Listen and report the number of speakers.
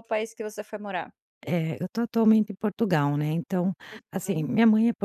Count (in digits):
2